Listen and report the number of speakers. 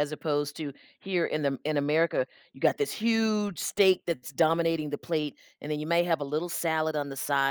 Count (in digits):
1